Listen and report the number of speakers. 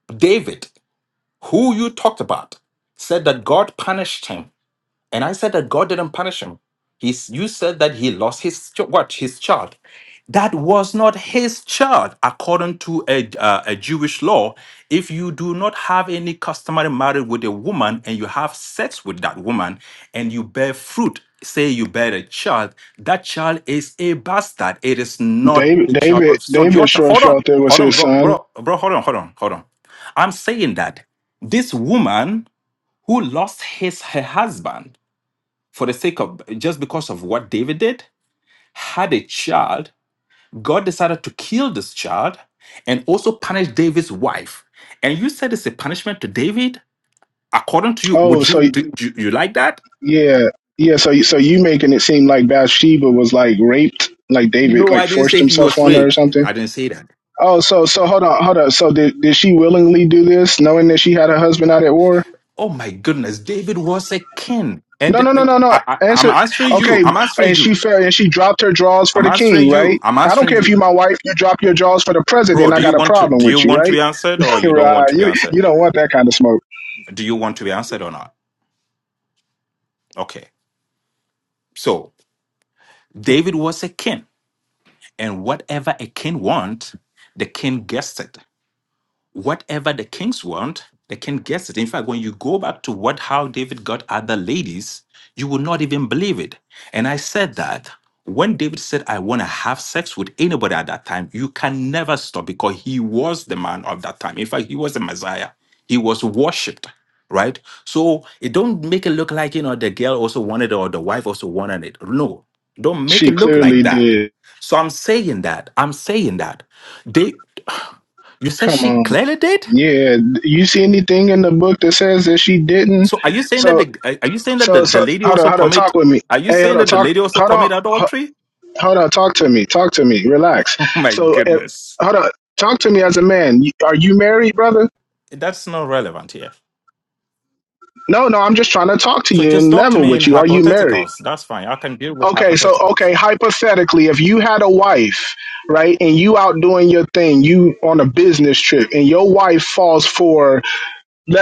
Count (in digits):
2